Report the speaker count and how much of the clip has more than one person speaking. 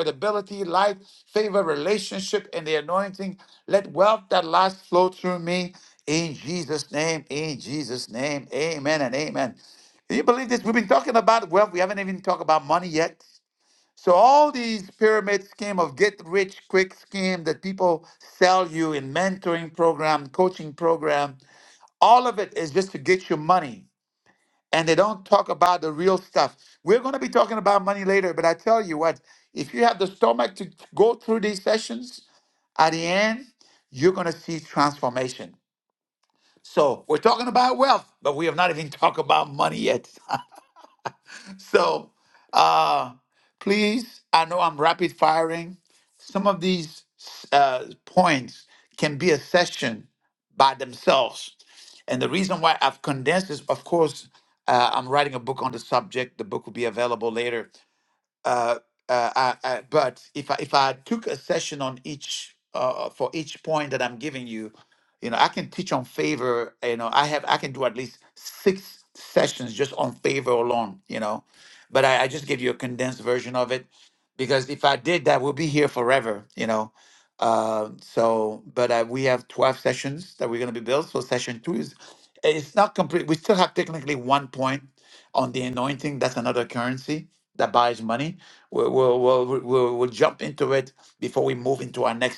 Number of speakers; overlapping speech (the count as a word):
one, no overlap